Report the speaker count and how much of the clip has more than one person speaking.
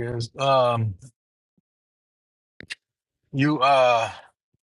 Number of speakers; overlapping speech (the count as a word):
one, no overlap